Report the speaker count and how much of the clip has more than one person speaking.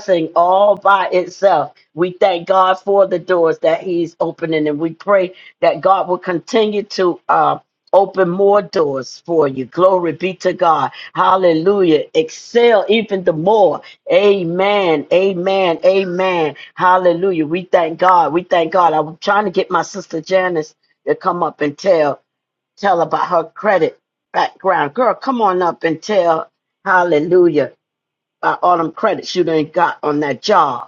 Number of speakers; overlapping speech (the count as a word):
one, no overlap